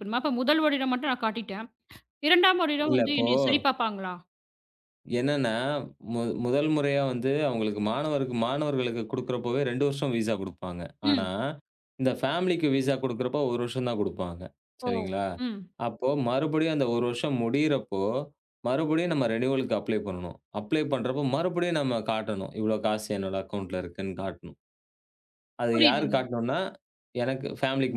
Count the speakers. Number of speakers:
2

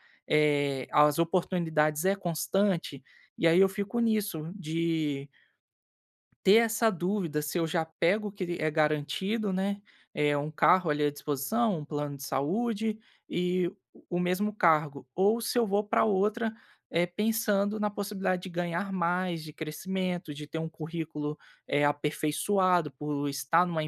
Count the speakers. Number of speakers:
1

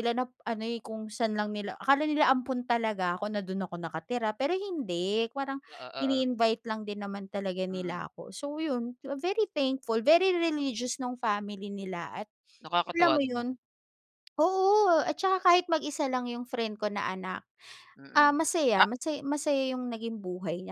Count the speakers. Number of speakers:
2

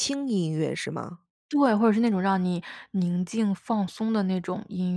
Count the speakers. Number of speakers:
2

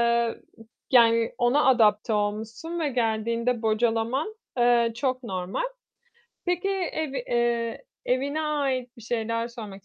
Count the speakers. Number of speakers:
1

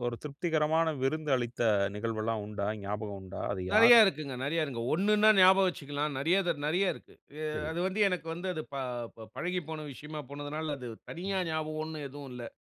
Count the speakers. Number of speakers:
2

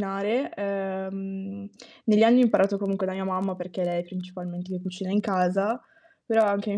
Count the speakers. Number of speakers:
1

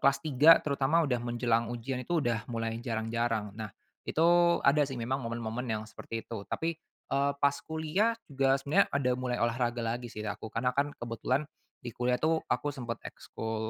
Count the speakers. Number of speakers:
1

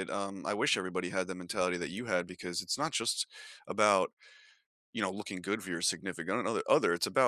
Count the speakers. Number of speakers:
1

